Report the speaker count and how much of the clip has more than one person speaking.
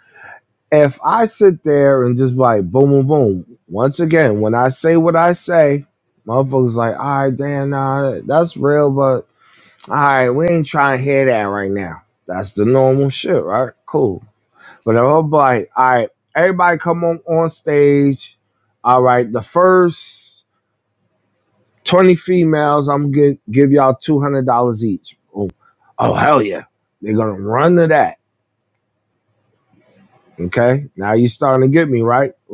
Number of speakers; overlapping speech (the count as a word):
one, no overlap